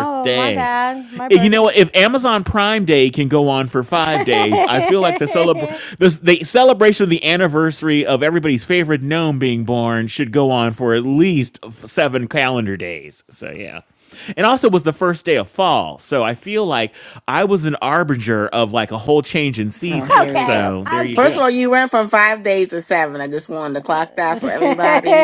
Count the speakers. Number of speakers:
3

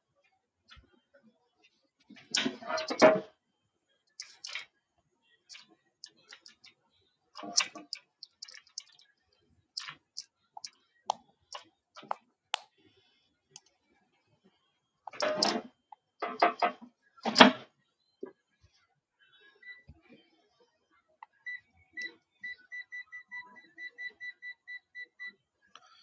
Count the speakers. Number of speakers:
0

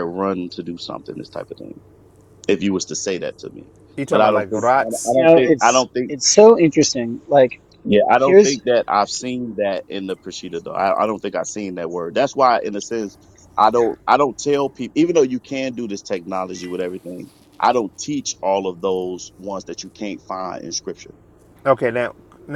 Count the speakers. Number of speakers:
3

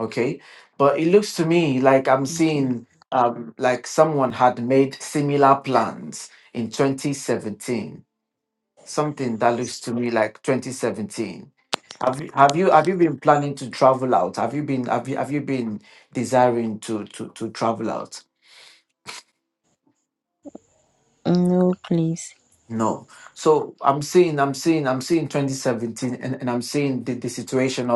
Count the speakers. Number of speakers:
2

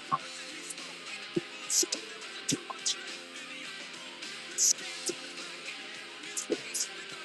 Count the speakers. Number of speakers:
0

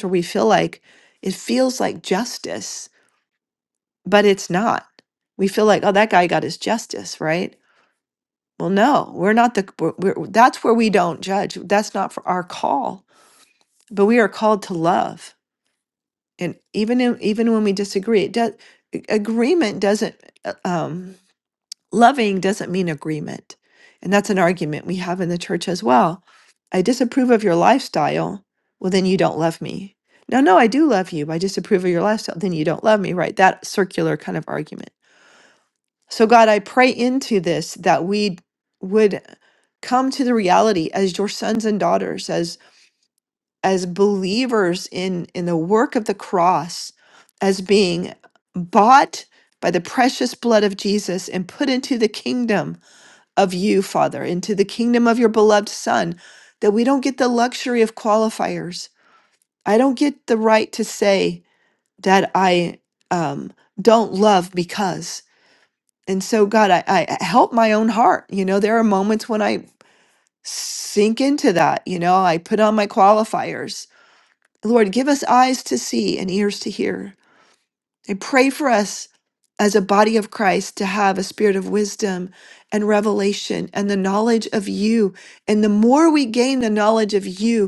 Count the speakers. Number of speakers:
1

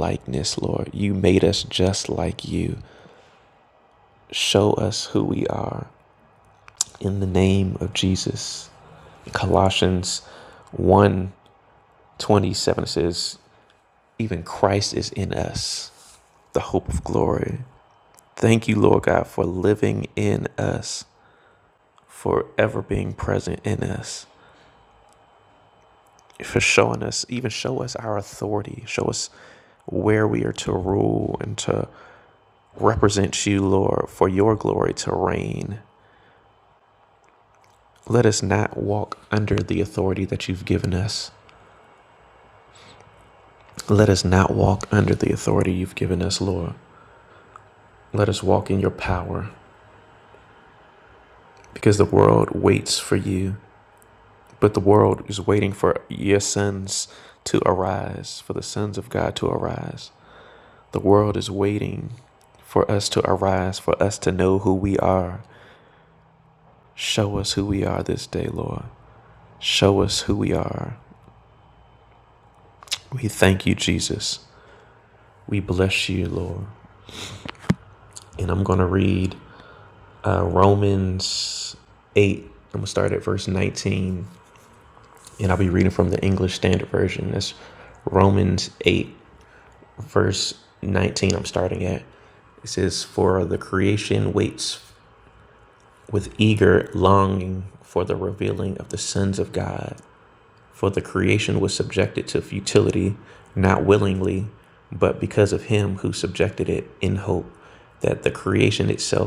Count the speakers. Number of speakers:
1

